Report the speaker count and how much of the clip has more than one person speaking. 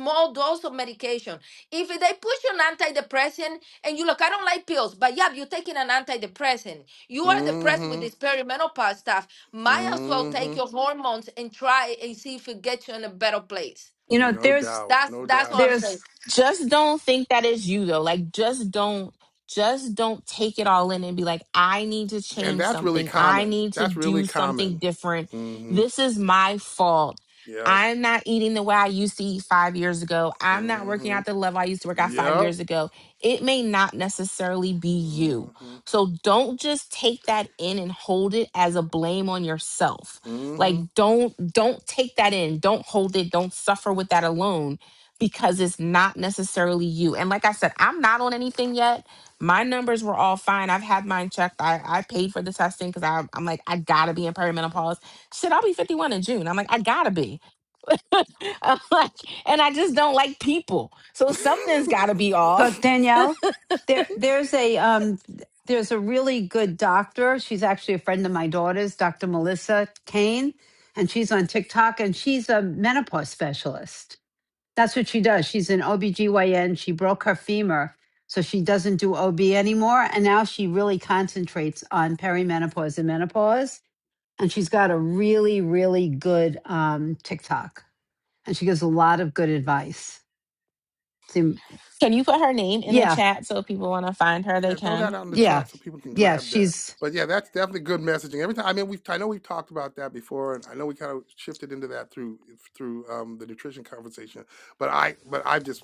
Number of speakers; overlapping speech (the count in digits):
4, about 9%